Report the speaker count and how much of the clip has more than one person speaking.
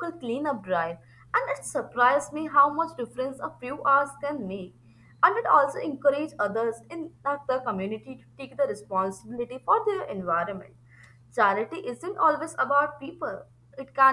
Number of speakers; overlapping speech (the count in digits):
1, no overlap